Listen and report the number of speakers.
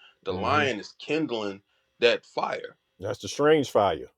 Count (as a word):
two